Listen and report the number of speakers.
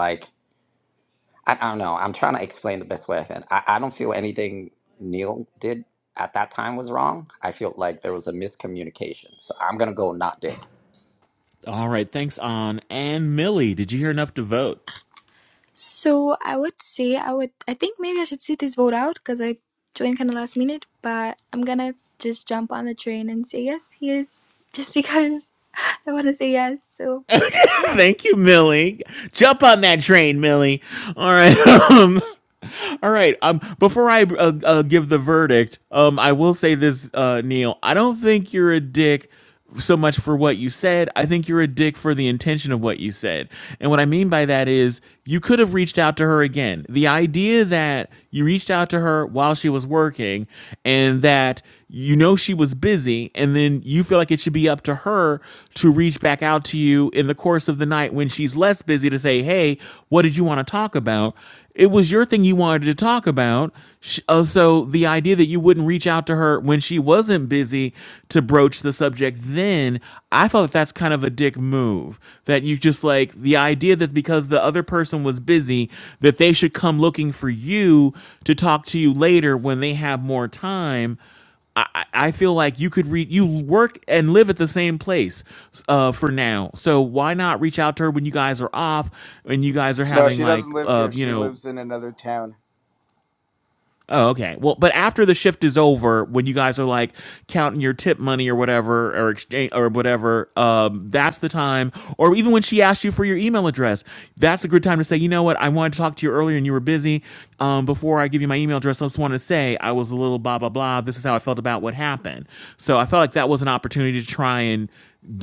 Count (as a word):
four